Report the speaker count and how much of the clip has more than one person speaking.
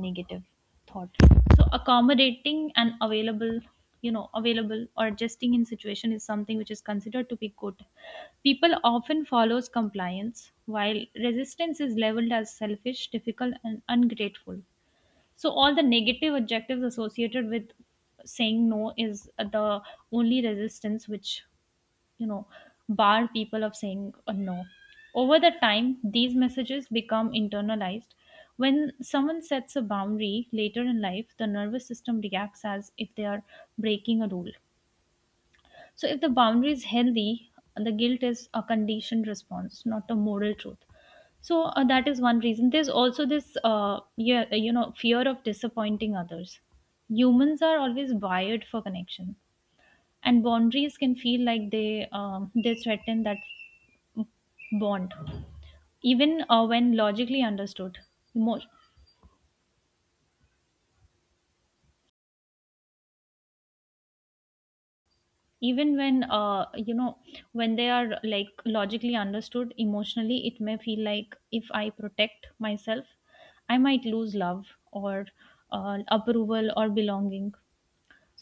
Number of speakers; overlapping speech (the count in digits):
1, no overlap